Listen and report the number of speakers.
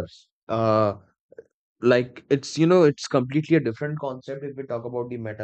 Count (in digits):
1